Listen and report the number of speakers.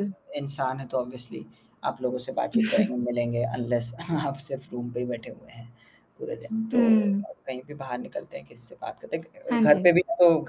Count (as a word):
two